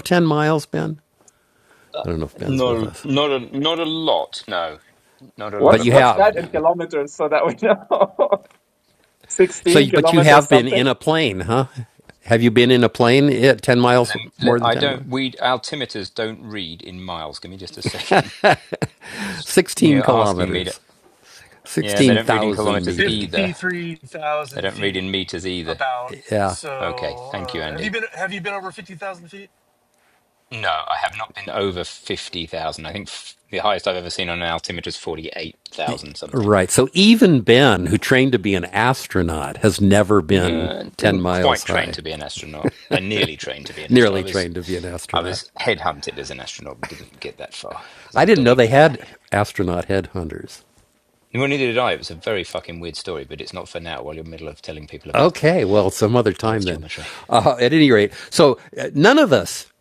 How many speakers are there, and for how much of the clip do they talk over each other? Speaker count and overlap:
4, about 21%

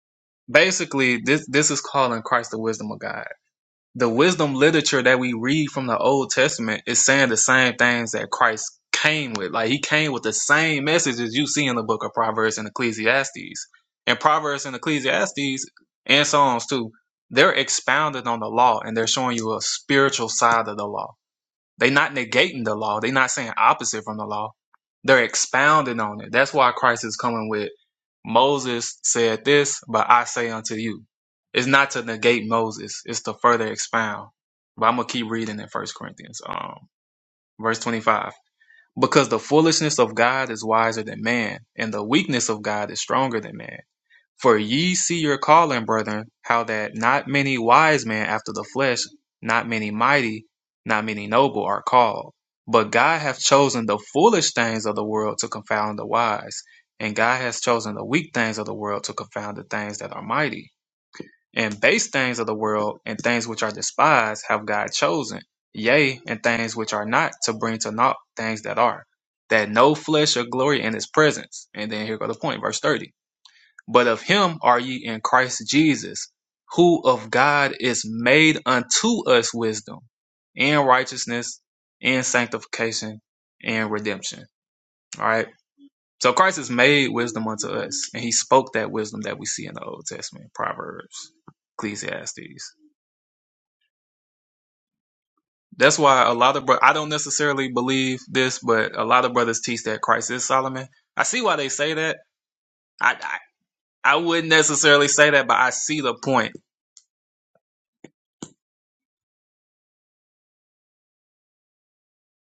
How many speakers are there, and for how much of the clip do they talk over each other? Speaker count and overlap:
1, no overlap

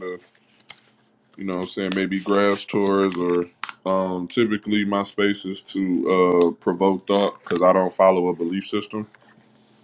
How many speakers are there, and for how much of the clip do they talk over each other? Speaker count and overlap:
1, no overlap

